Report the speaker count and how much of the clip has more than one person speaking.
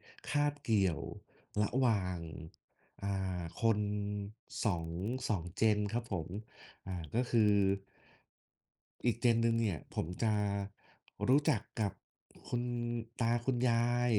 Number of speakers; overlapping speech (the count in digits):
1, no overlap